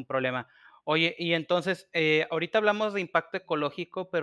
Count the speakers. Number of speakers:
1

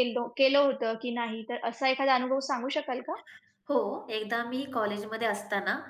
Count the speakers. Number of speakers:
2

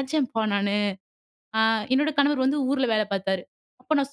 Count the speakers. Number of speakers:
1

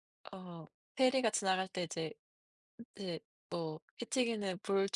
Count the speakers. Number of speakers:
1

